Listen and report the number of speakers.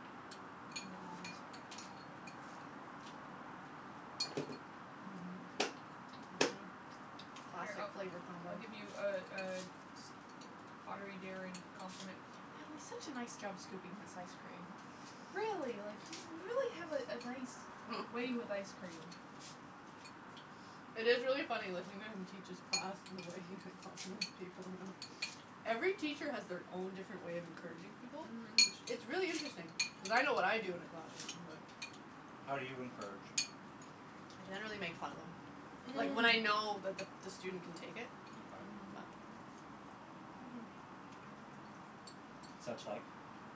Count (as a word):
three